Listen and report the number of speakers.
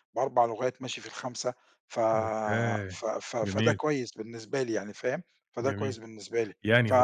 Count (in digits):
2